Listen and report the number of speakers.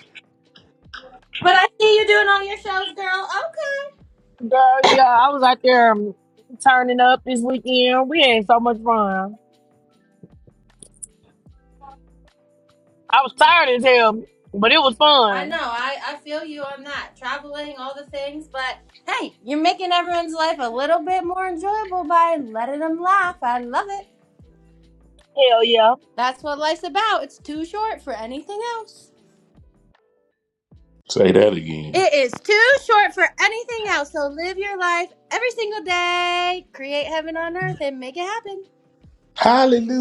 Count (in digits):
3